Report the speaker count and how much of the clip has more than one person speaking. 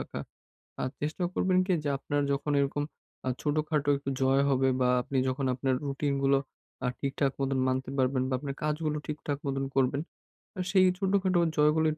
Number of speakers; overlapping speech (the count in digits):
1, no overlap